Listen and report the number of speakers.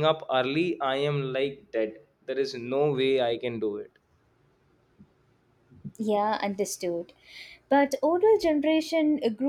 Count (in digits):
2